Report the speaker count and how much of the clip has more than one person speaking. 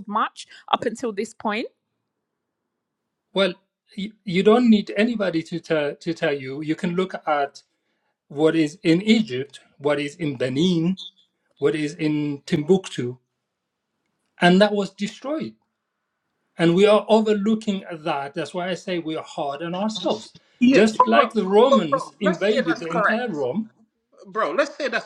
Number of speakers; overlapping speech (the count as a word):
three, about 8%